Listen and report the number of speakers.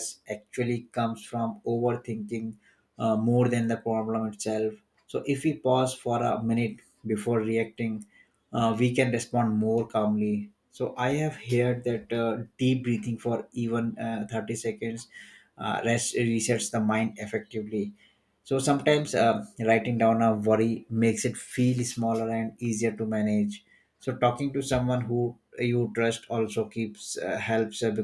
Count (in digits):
1